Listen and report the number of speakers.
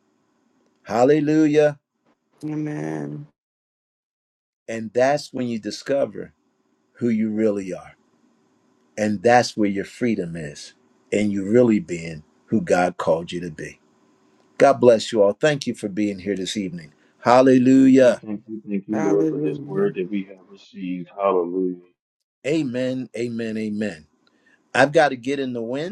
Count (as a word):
three